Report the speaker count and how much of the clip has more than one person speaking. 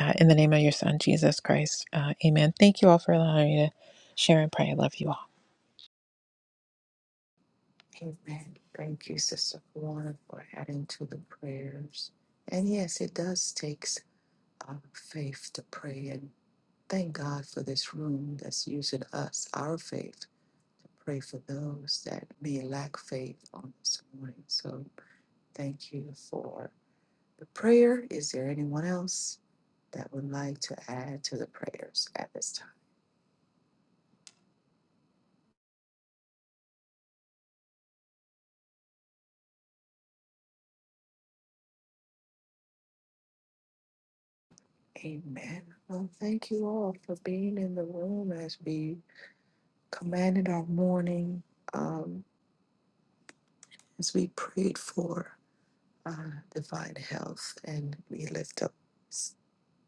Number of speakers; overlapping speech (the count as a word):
two, no overlap